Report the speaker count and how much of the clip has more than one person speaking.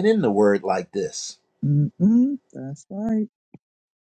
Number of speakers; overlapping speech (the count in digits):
2, no overlap